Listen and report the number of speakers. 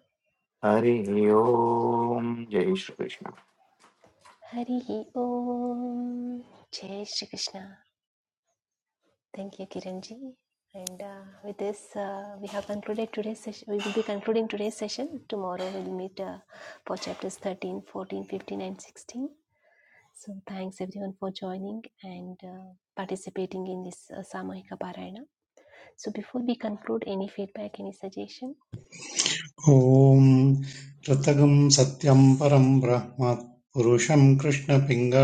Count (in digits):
3